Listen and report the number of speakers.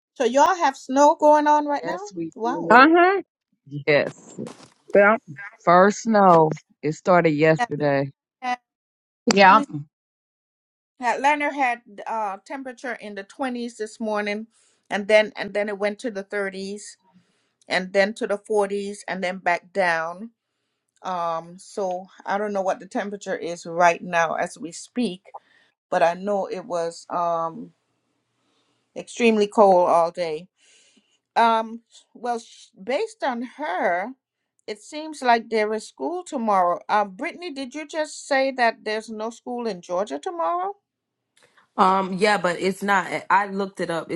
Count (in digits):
4